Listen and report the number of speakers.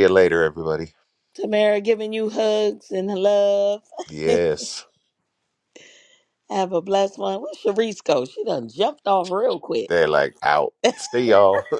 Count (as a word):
two